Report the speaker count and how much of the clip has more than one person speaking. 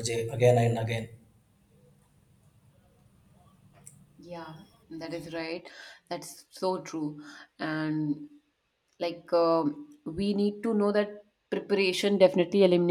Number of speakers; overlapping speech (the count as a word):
two, no overlap